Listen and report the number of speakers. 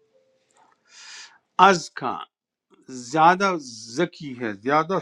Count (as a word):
one